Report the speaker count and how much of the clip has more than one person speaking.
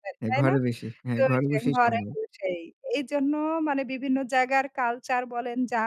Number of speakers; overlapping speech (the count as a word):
two, about 23%